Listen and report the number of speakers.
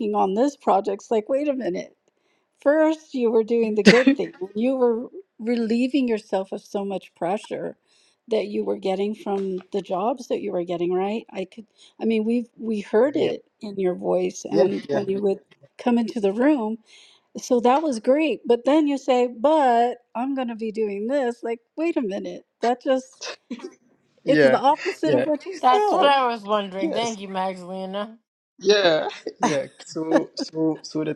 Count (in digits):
3